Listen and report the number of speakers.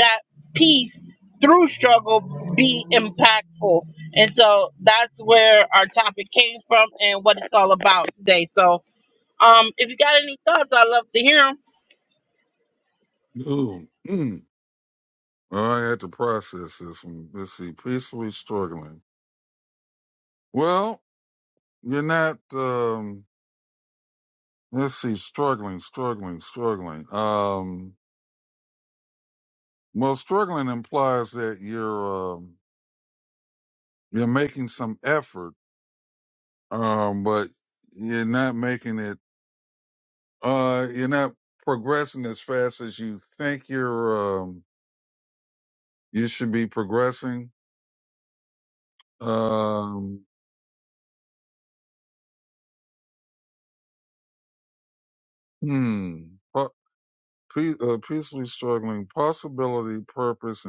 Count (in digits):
2